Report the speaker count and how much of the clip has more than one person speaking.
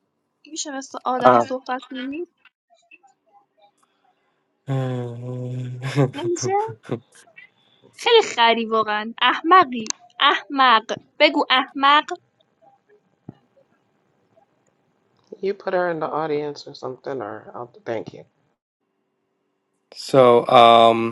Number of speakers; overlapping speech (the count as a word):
three, about 1%